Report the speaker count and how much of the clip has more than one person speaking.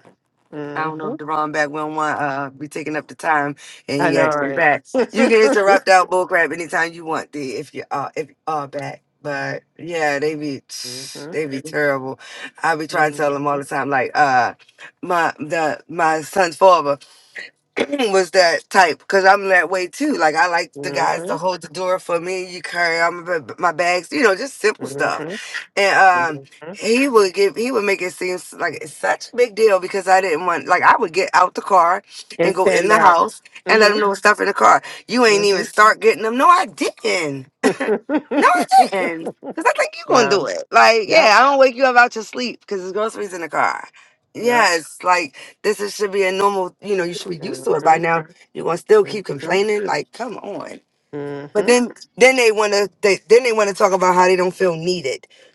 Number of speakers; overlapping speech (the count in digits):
2, about 10%